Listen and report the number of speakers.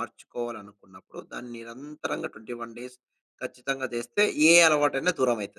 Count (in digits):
1